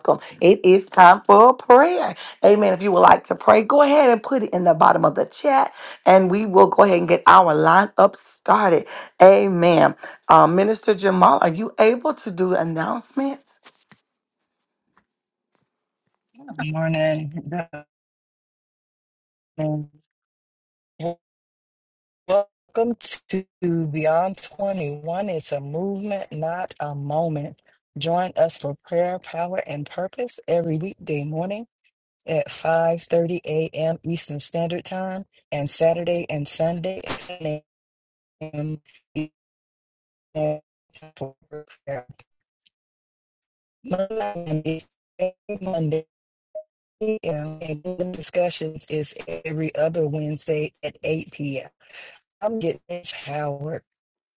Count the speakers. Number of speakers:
two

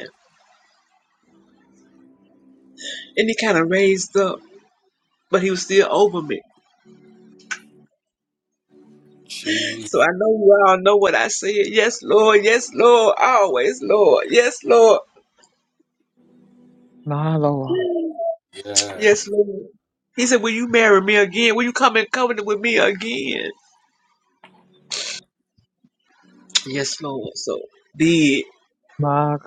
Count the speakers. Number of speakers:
three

